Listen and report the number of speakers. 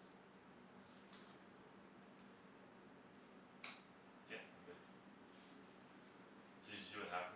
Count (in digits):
1